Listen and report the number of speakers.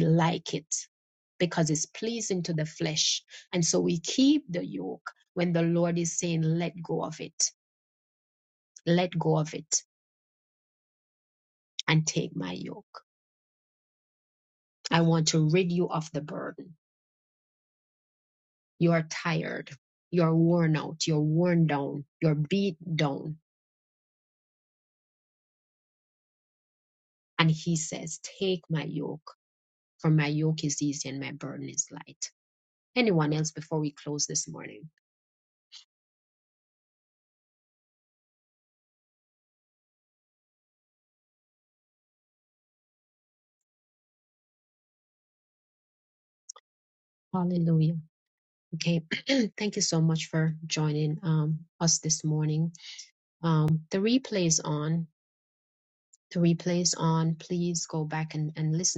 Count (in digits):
1